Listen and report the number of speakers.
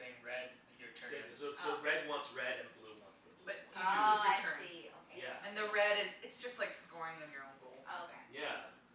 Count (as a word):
four